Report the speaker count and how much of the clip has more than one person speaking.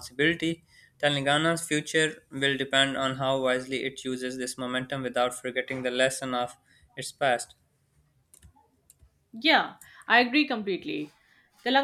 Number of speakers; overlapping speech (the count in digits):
2, no overlap